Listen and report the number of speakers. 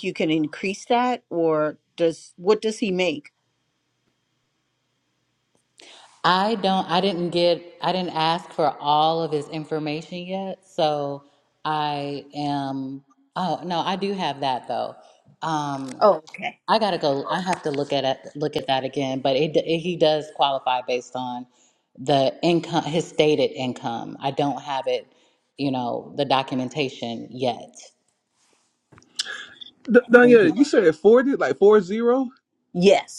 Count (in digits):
3